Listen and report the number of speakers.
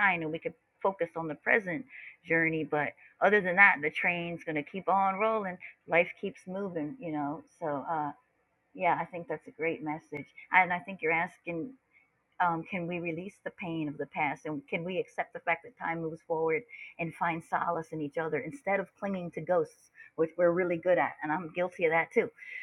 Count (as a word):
one